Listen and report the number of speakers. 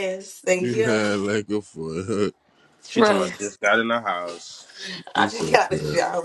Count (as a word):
three